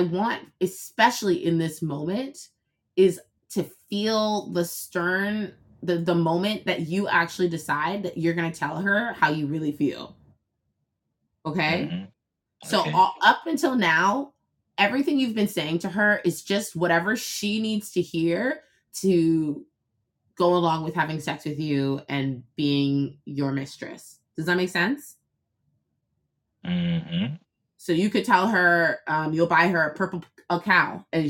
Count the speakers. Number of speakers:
two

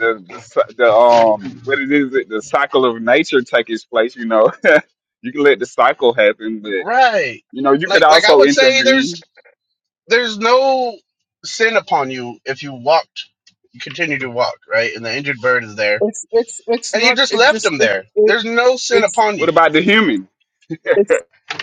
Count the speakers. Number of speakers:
three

